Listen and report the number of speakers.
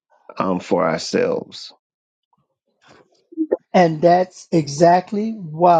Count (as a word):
two